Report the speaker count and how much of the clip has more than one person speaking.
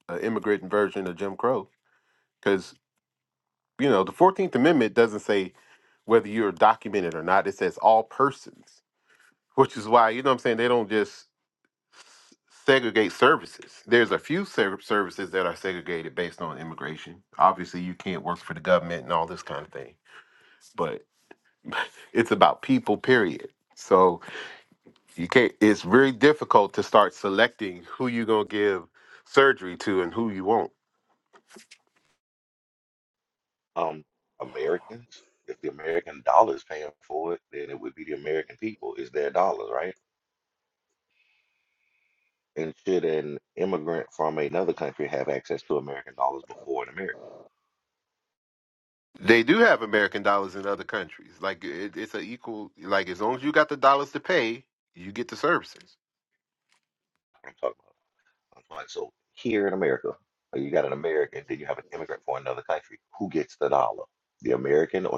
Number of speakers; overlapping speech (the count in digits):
2, no overlap